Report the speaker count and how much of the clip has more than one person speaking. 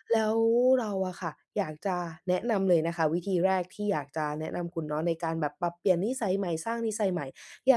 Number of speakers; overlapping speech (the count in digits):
1, no overlap